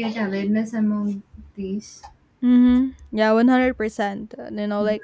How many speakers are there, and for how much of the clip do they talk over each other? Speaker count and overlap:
2, about 4%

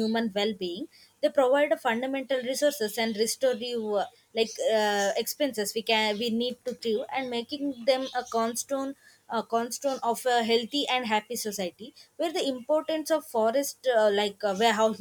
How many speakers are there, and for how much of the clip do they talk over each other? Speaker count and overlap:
1, no overlap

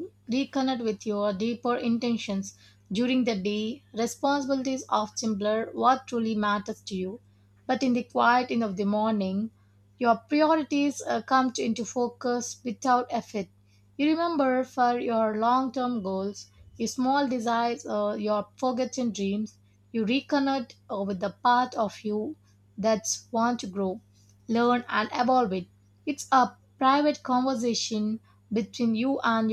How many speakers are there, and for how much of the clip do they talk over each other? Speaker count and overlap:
1, no overlap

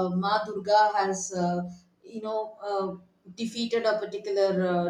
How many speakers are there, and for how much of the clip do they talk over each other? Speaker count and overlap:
1, no overlap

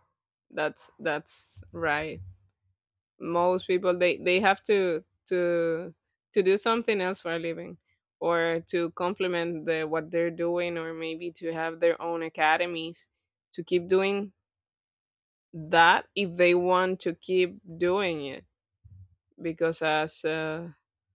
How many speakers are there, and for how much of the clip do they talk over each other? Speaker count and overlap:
1, no overlap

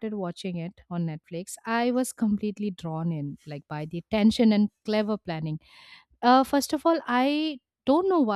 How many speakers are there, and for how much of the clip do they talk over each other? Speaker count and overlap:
1, no overlap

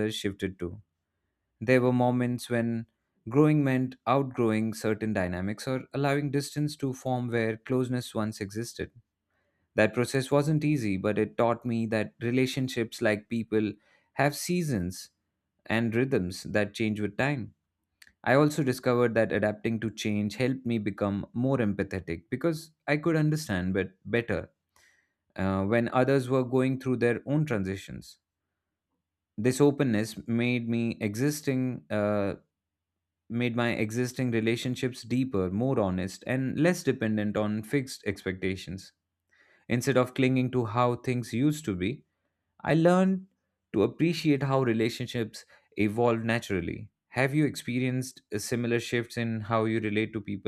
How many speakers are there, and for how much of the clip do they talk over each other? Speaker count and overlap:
1, no overlap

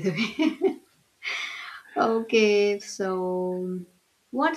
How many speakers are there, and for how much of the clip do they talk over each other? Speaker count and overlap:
1, no overlap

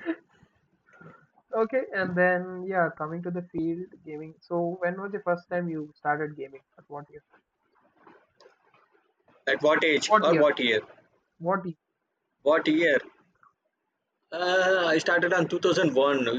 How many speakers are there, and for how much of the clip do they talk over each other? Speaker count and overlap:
2, about 3%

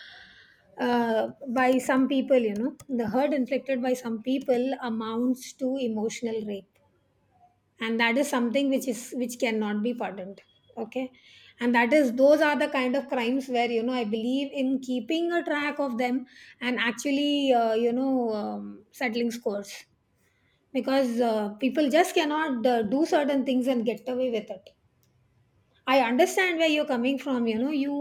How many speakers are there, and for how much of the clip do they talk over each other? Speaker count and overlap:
1, no overlap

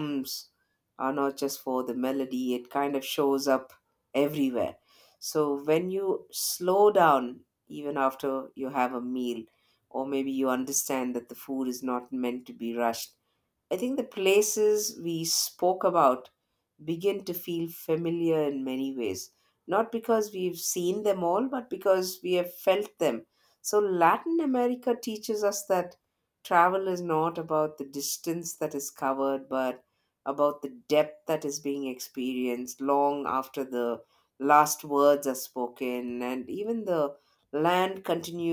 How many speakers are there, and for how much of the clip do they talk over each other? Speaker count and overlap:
1, no overlap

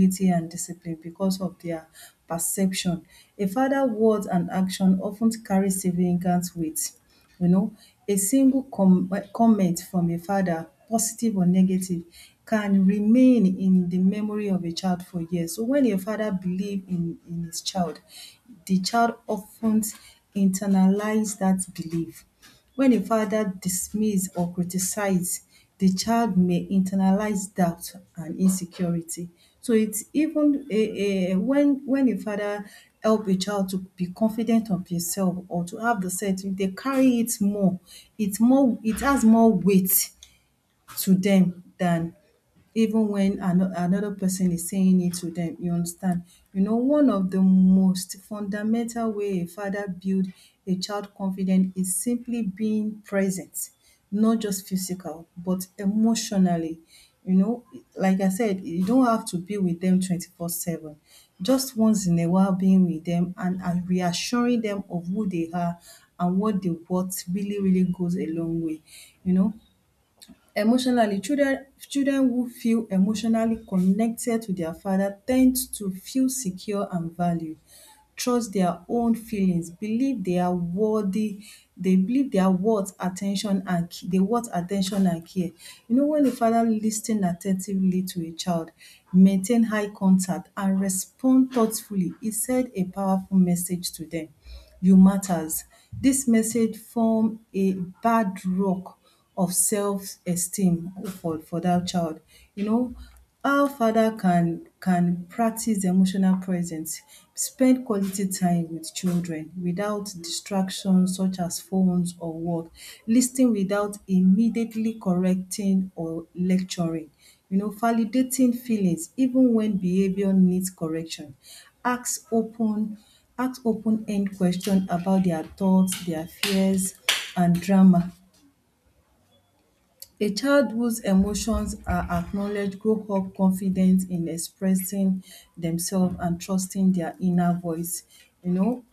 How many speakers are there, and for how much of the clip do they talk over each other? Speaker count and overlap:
1, no overlap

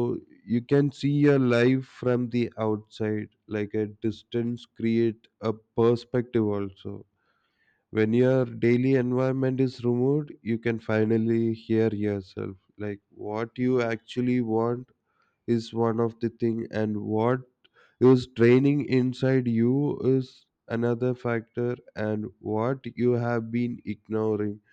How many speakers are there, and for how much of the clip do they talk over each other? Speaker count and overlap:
1, no overlap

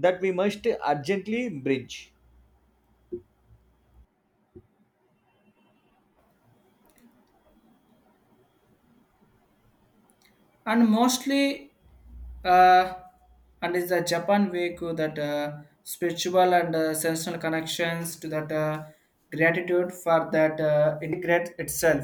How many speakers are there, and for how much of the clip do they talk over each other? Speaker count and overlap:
2, no overlap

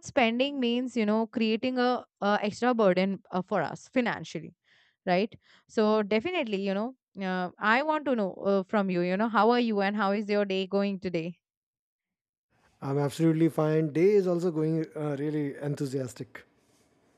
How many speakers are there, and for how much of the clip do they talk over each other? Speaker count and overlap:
2, no overlap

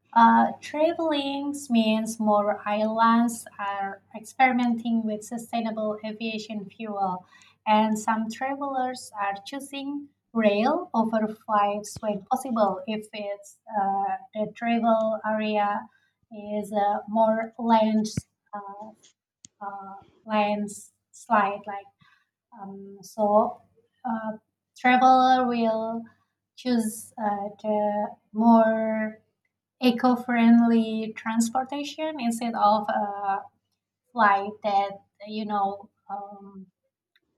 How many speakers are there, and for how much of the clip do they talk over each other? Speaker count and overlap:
1, no overlap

